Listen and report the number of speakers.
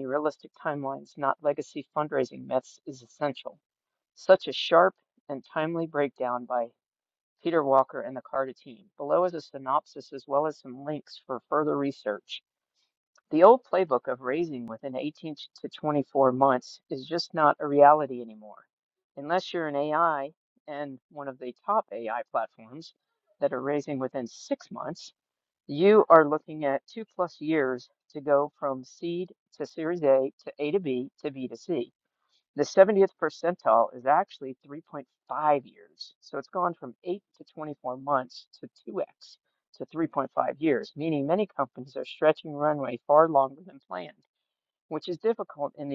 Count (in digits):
1